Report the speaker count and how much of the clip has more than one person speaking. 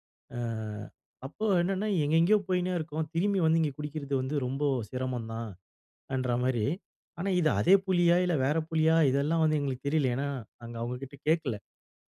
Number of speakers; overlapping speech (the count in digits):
1, no overlap